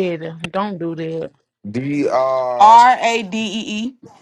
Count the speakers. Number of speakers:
three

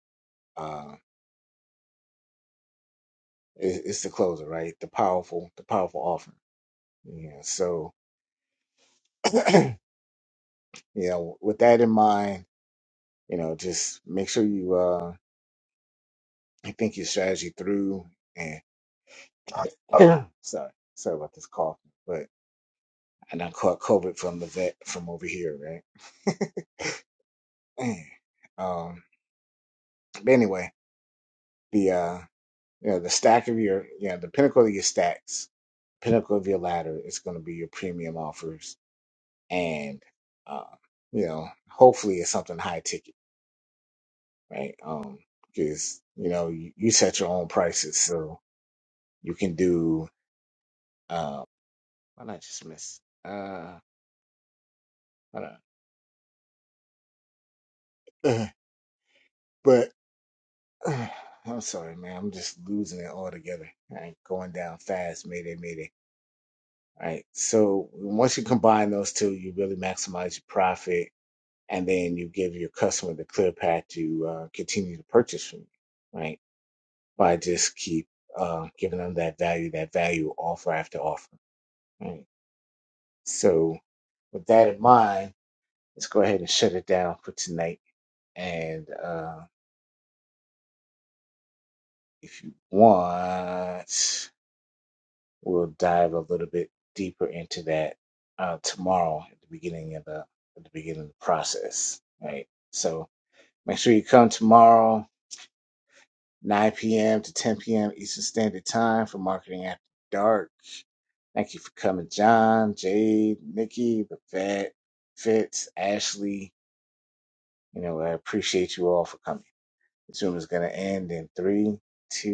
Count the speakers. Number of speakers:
one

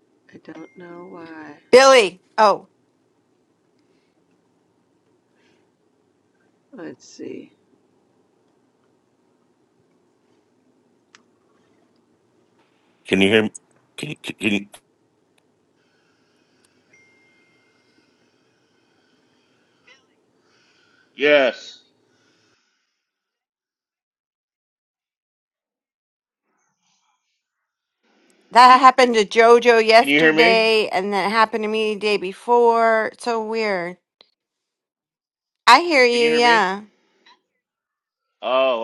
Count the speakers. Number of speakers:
three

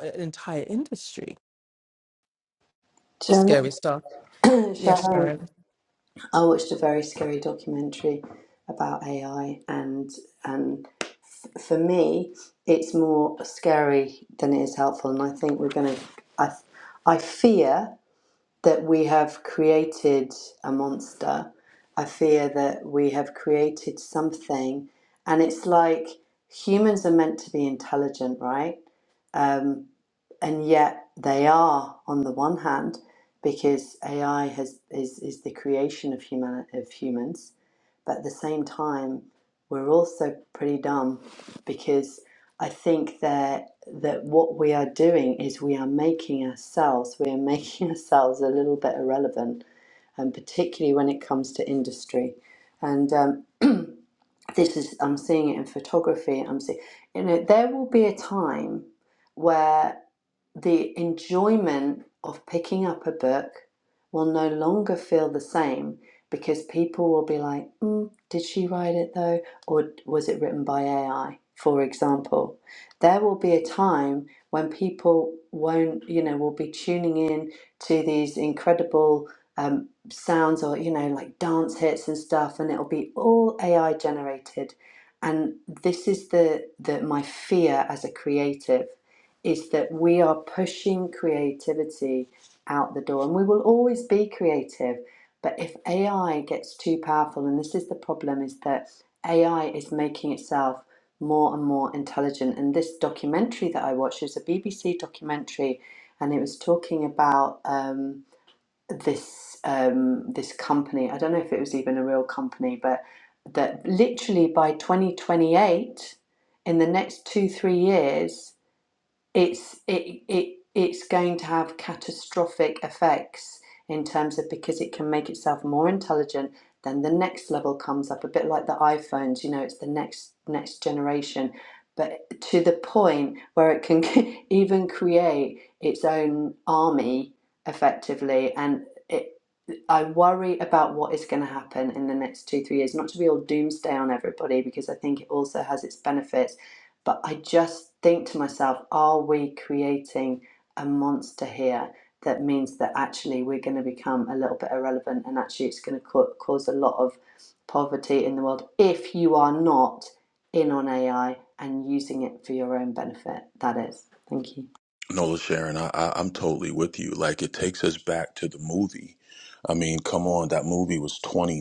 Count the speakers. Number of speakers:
three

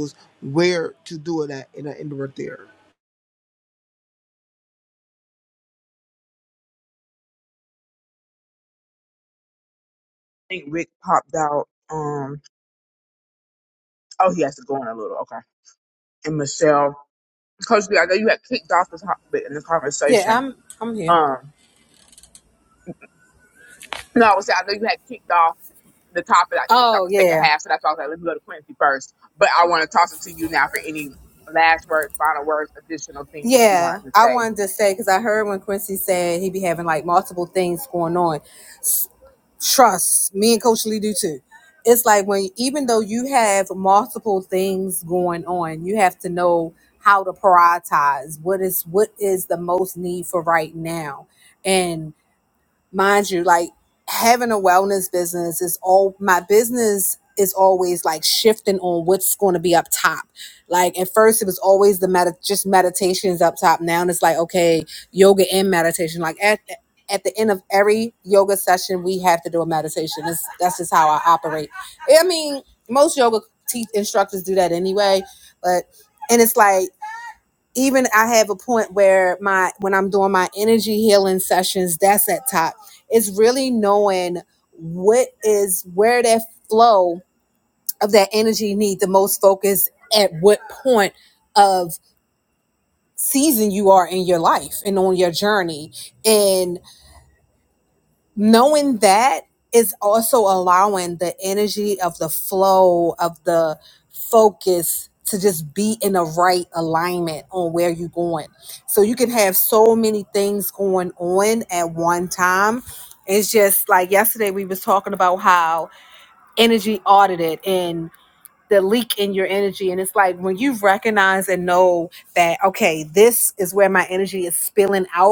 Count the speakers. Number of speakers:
three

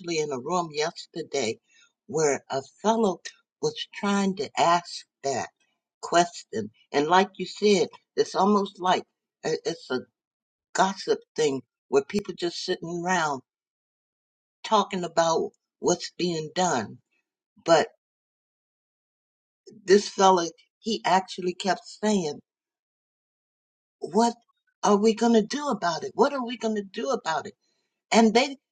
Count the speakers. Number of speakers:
one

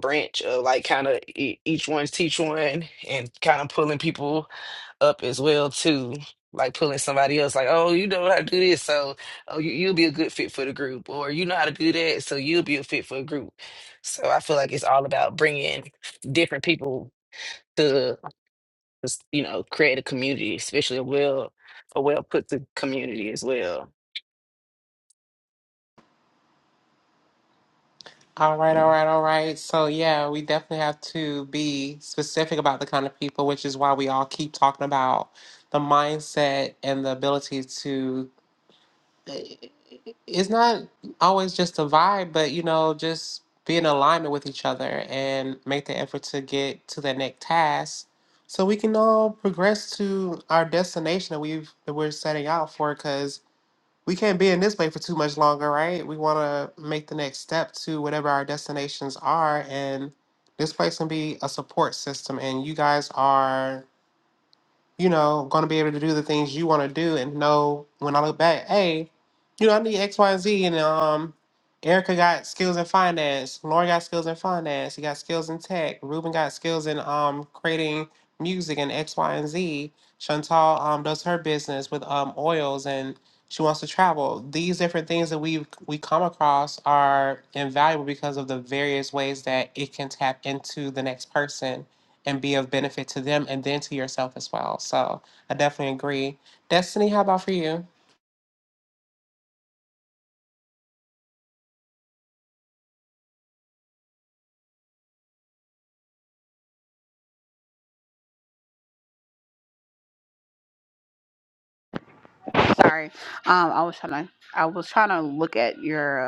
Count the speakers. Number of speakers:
three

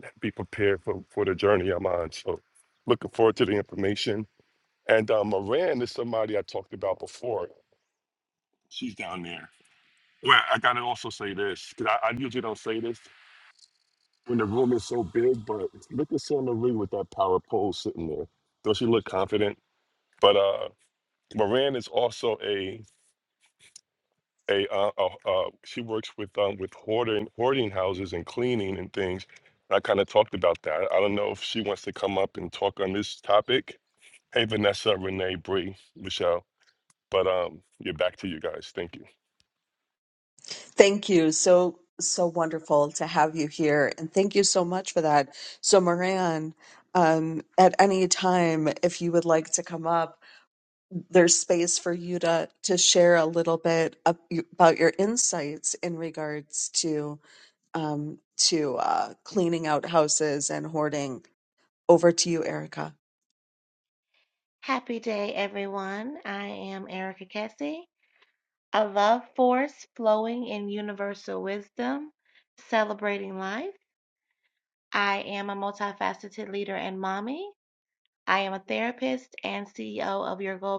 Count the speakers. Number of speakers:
three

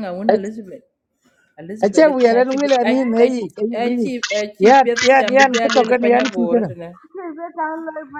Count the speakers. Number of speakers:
three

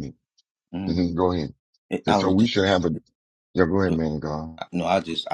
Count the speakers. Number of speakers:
two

